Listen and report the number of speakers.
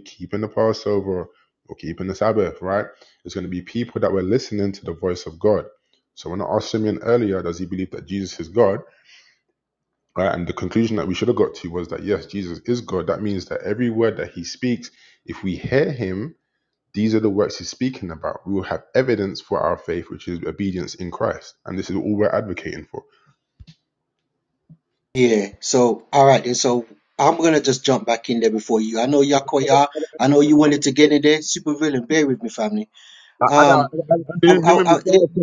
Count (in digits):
3